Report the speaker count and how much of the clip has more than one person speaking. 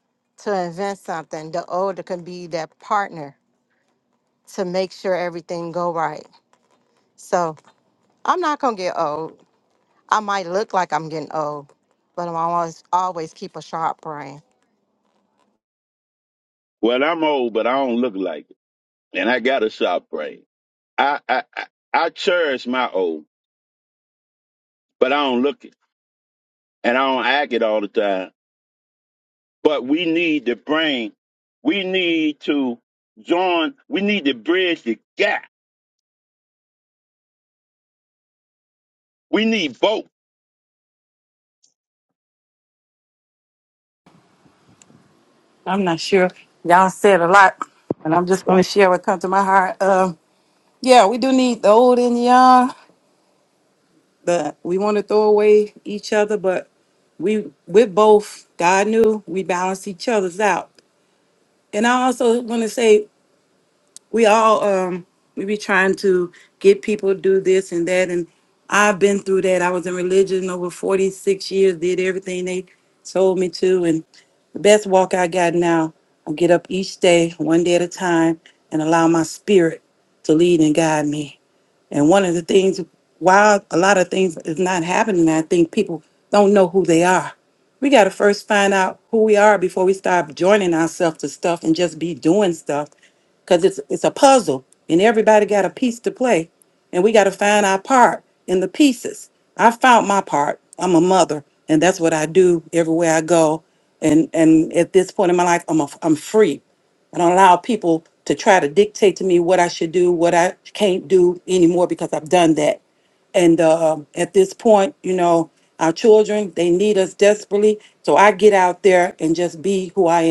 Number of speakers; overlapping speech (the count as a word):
three, no overlap